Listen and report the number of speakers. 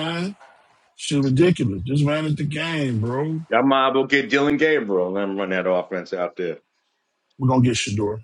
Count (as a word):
two